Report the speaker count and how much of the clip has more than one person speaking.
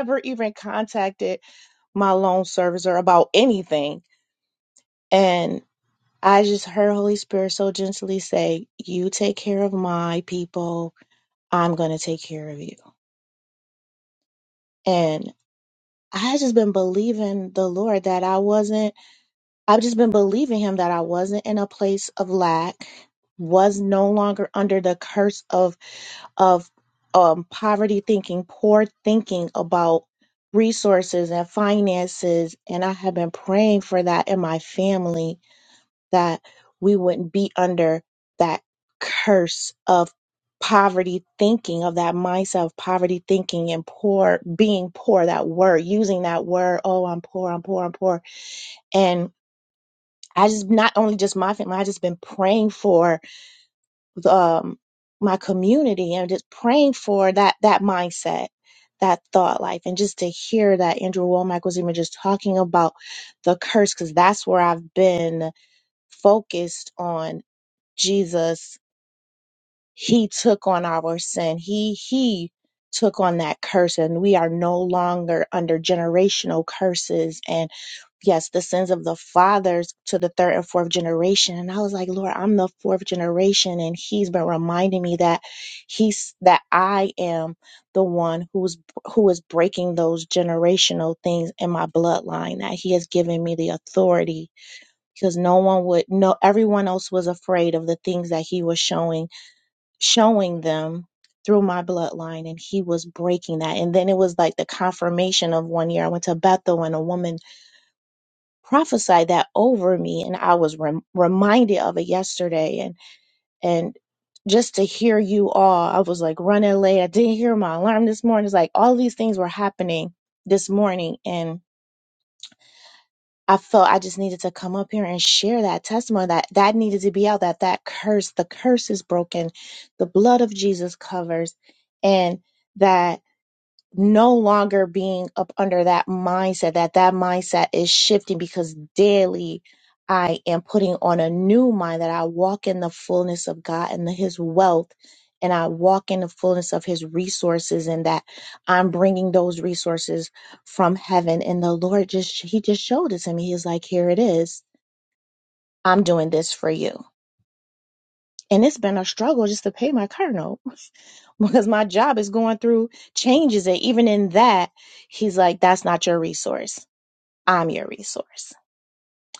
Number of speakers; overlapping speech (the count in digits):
1, no overlap